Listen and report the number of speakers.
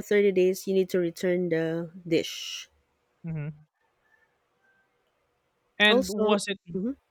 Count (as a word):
two